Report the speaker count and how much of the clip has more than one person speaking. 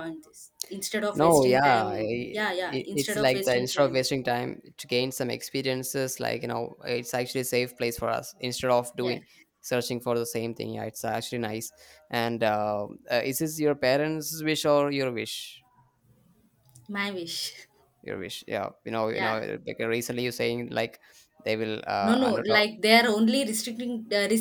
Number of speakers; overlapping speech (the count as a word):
two, about 15%